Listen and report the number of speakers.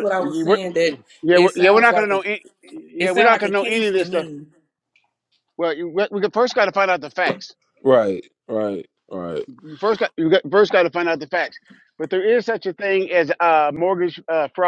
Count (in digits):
3